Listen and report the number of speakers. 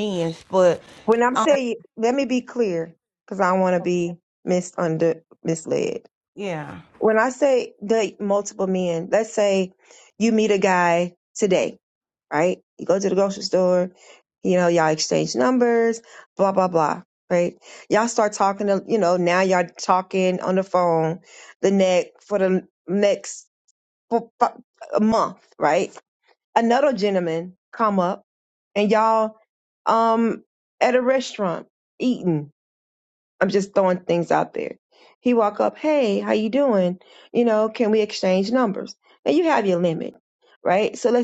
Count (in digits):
2